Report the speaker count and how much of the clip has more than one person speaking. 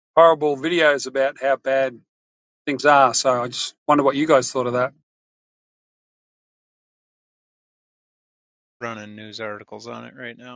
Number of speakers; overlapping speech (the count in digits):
2, no overlap